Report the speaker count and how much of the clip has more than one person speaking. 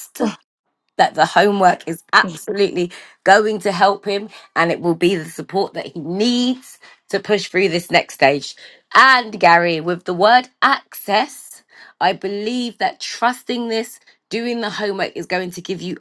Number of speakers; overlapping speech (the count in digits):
1, no overlap